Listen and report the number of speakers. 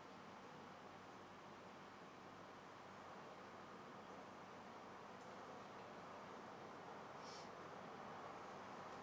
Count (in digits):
0